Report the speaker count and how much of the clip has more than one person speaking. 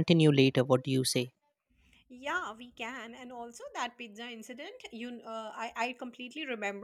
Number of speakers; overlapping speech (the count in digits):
2, no overlap